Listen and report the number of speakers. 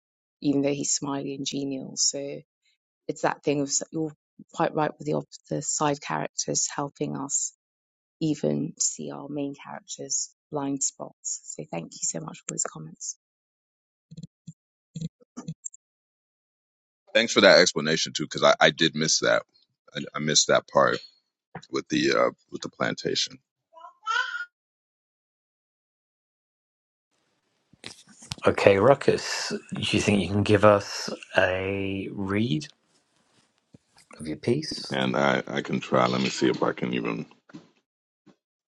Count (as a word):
three